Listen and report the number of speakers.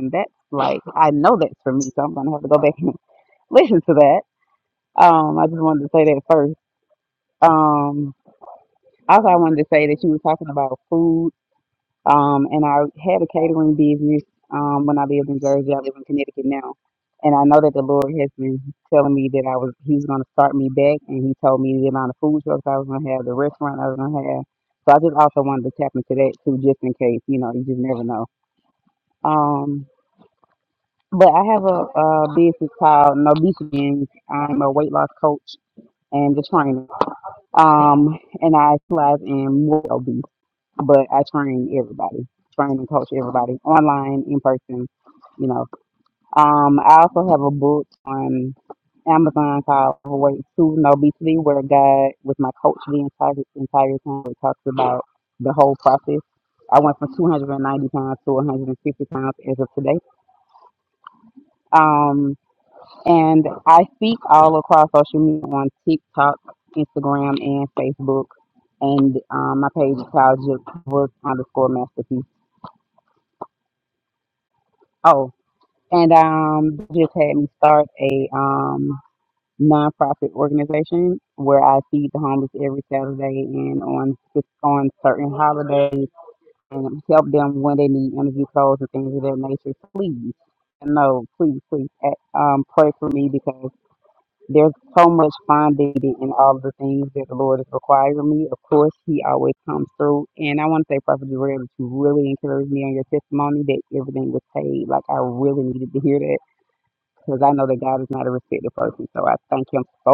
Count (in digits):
1